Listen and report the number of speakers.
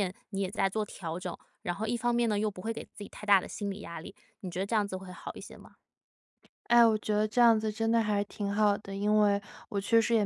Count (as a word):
two